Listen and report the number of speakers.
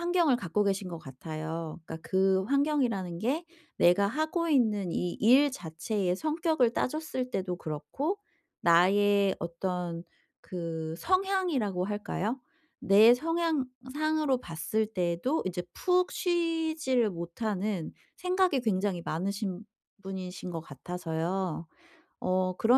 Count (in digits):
1